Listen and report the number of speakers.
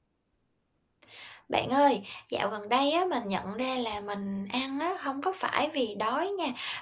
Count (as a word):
one